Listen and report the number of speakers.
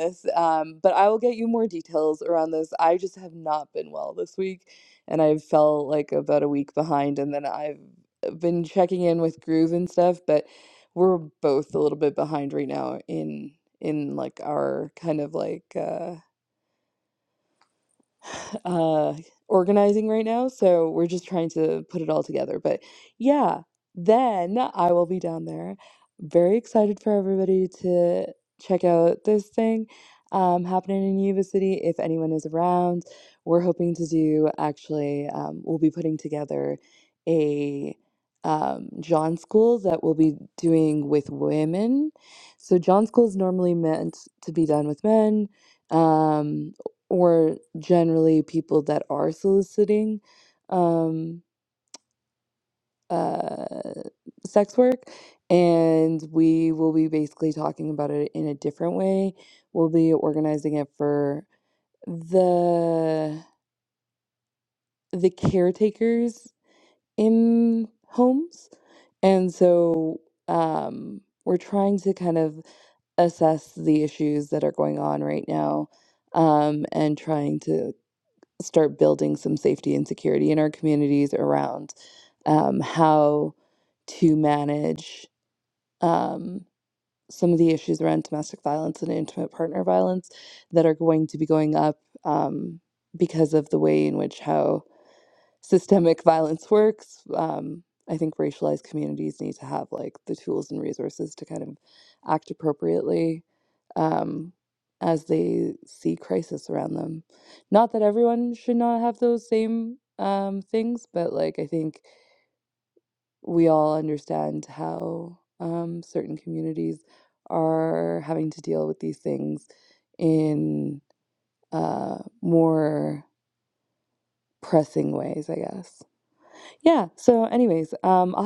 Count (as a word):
one